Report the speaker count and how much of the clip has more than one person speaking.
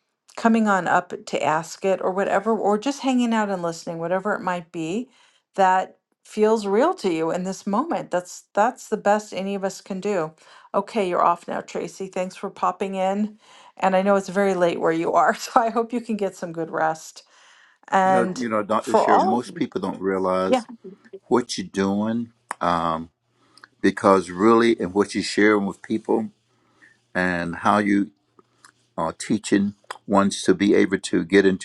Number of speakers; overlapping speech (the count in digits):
2, about 4%